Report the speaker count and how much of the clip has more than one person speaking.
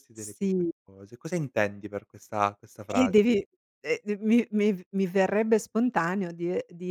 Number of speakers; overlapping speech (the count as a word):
two, about 8%